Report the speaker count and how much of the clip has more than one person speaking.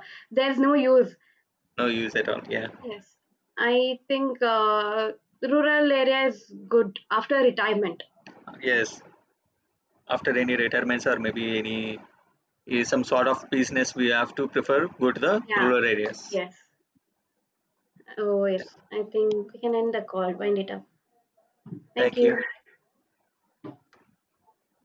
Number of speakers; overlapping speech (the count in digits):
2, about 3%